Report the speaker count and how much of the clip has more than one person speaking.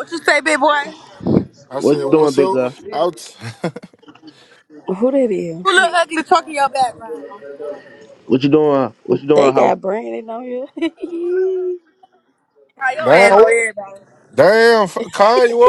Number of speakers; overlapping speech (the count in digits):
4, about 11%